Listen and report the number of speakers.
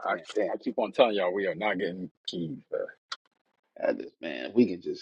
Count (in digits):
2